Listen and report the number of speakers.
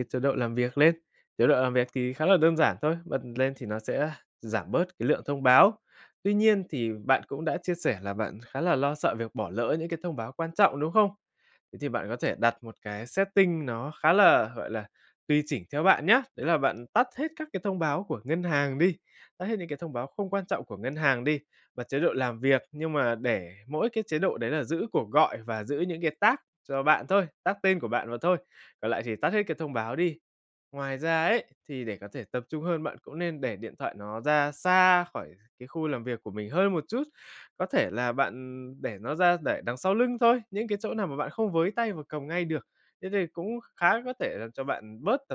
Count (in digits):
1